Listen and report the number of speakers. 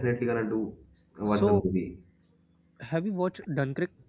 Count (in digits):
2